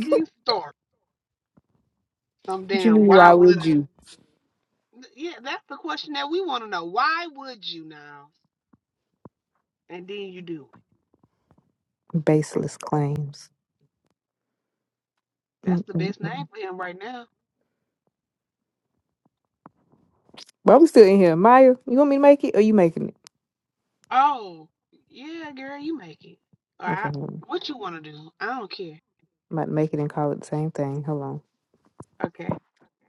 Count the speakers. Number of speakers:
2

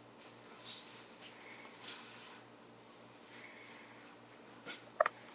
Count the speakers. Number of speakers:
0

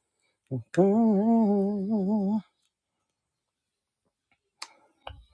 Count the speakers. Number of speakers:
1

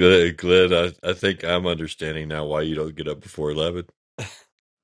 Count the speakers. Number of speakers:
1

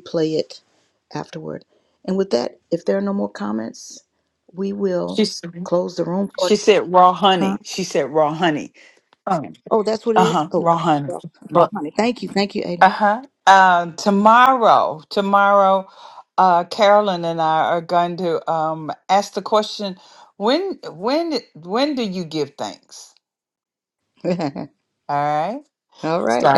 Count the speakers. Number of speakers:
2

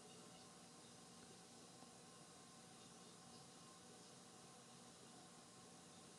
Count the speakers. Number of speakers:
0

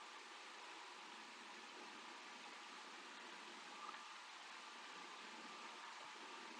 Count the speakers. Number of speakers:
0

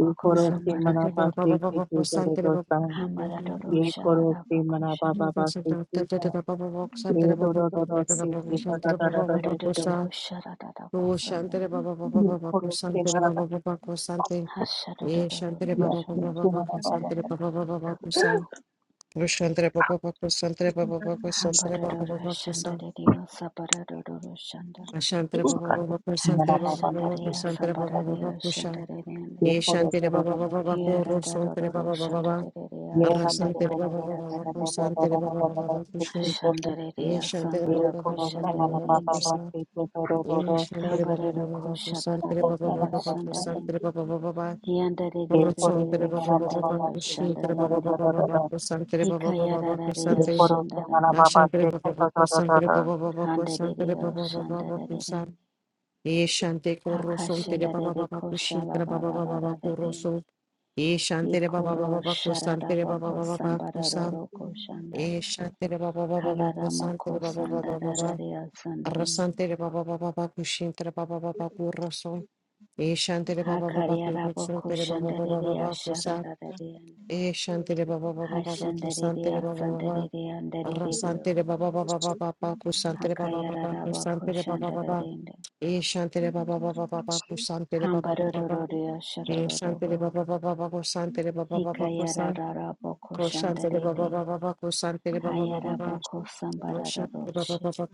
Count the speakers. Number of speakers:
3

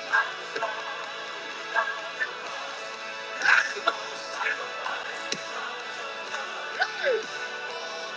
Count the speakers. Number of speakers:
0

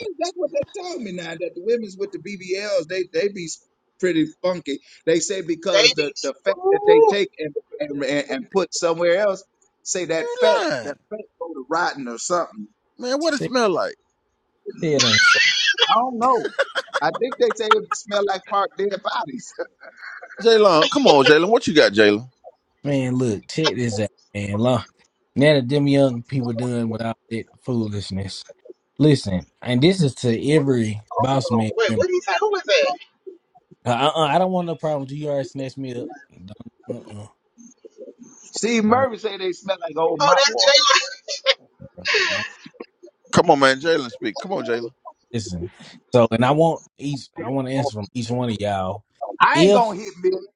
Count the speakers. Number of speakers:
4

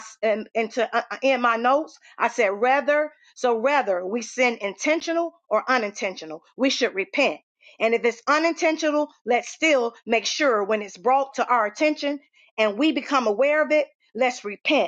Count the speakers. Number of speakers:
1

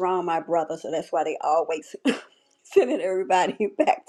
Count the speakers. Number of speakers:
1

